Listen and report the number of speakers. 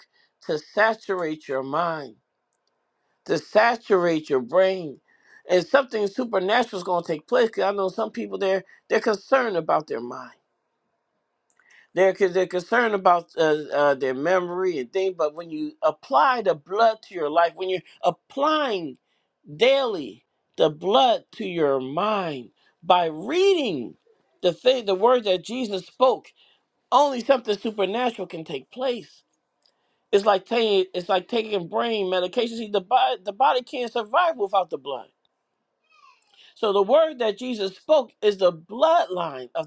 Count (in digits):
1